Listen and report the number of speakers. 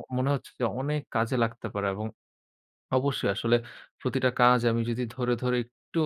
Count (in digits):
1